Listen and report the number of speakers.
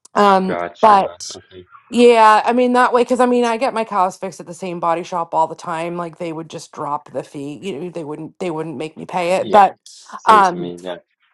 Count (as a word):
two